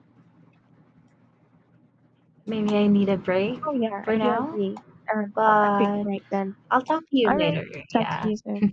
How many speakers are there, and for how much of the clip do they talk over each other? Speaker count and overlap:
2, about 24%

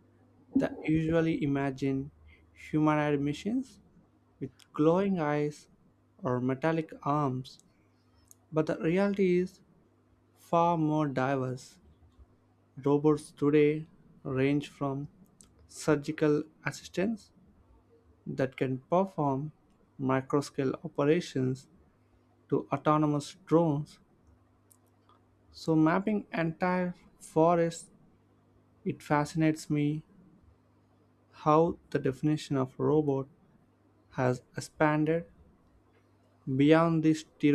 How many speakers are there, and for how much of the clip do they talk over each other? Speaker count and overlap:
1, no overlap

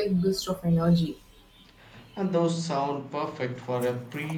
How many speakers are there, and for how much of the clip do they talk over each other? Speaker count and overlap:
2, no overlap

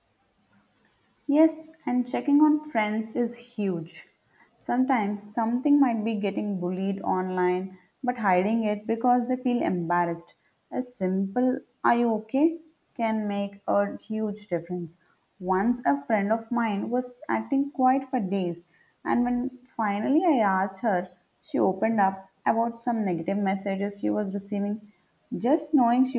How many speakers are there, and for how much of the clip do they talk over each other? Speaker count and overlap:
1, no overlap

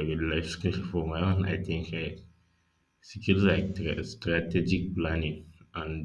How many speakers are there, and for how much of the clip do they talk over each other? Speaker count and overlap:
1, no overlap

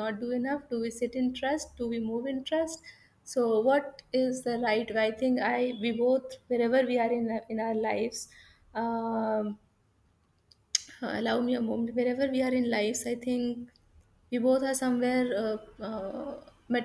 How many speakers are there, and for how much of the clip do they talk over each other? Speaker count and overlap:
1, no overlap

